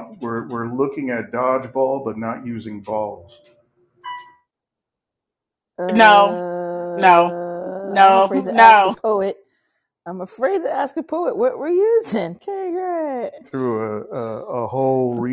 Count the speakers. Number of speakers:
3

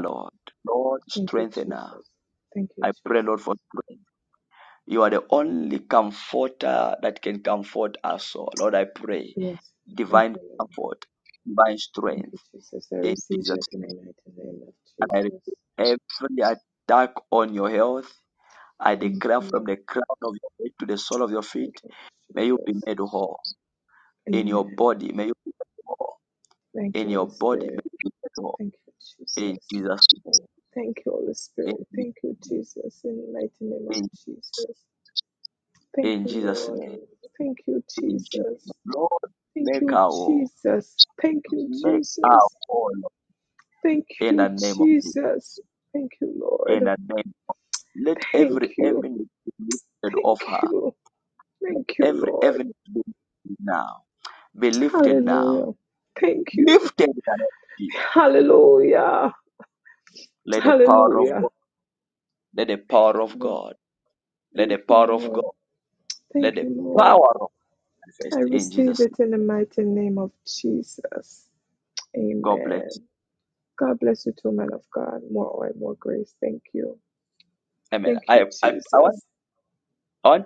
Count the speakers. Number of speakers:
2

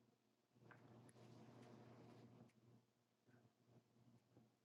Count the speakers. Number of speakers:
0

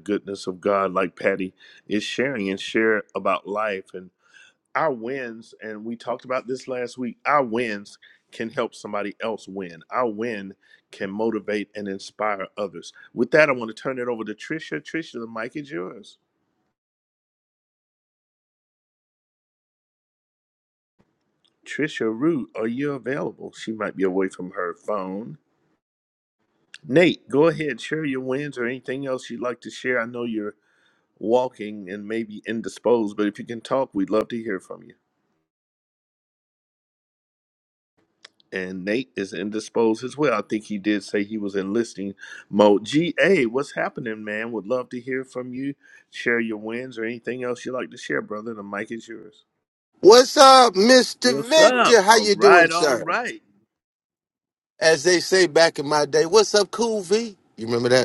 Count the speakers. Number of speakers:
2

